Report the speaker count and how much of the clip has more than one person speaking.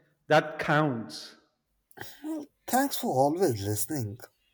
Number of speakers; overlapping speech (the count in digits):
2, no overlap